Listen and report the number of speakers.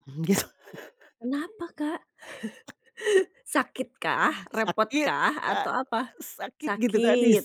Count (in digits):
2